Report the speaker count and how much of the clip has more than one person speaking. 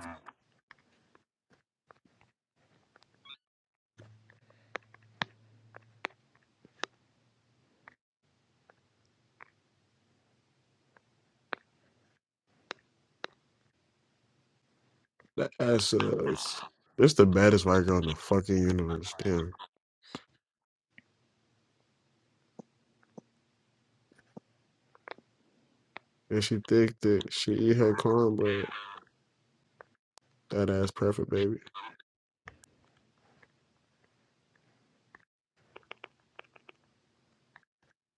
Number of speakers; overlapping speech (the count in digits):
1, no overlap